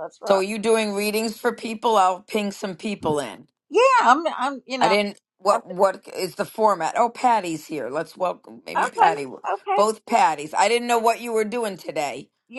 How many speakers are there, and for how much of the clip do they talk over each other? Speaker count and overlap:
two, about 6%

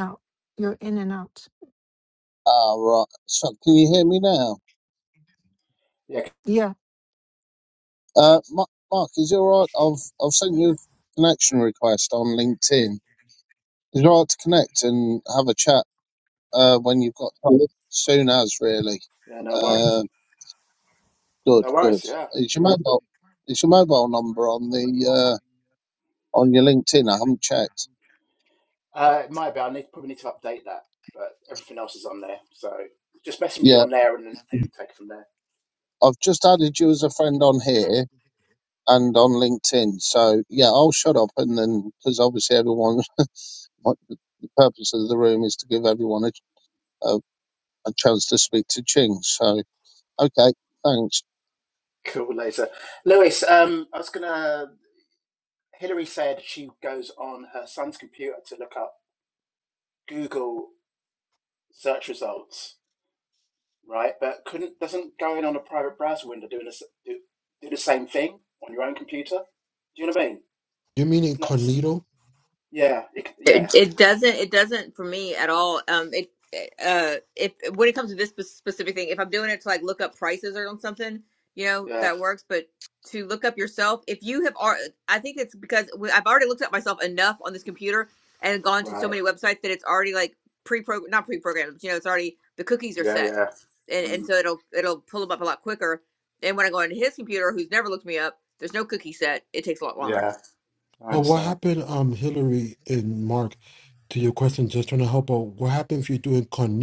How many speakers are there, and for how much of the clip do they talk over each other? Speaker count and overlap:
five, about 4%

